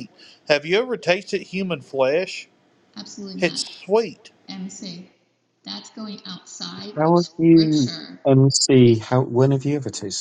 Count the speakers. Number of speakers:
3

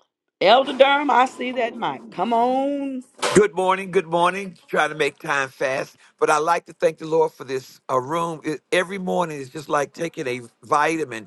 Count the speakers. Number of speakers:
2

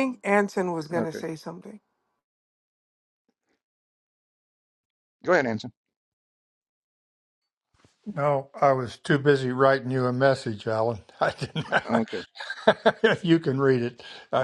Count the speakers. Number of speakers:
3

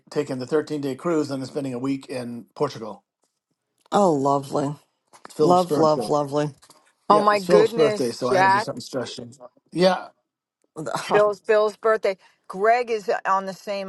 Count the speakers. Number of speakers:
3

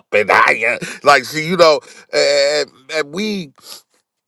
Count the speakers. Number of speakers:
1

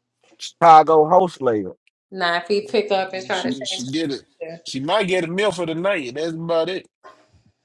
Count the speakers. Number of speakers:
3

